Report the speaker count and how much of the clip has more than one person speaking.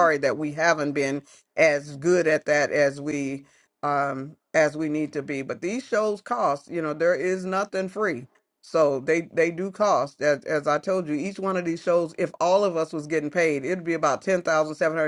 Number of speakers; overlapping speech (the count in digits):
1, no overlap